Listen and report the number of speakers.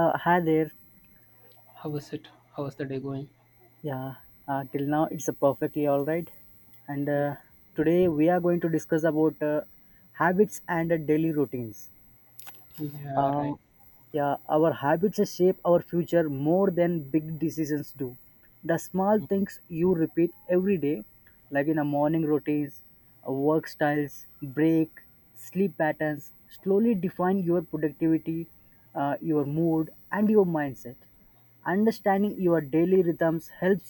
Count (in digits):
2